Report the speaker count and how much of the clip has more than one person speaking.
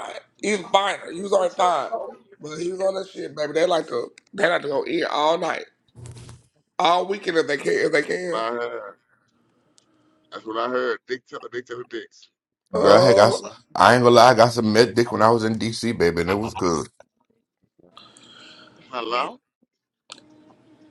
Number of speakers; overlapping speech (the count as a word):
three, about 3%